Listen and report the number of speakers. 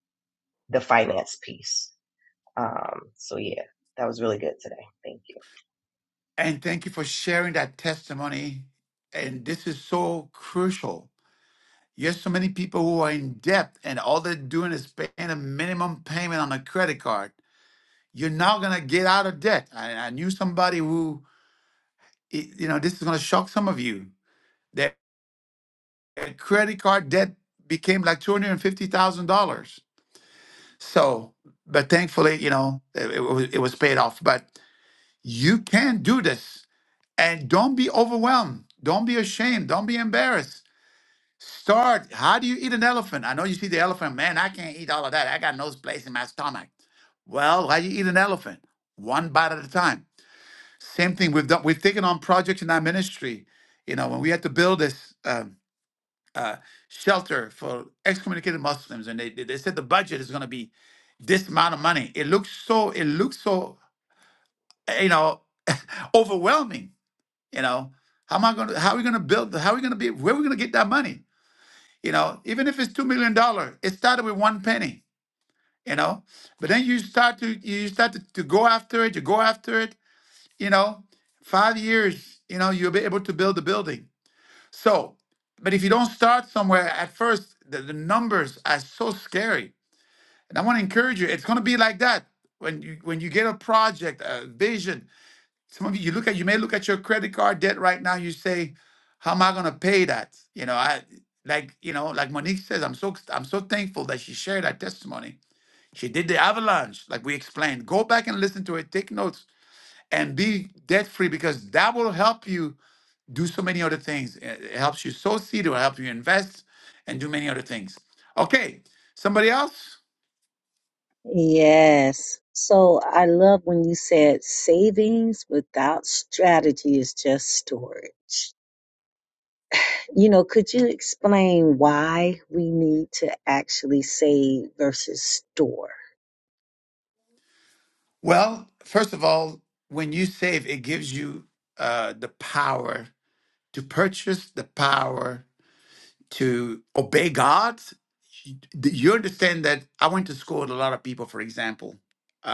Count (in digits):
3